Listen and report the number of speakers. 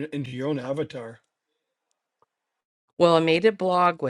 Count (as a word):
two